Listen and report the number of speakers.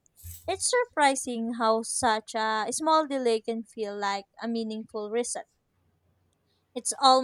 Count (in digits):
1